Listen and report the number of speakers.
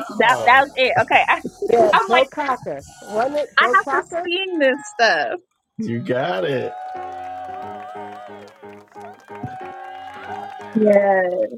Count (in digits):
3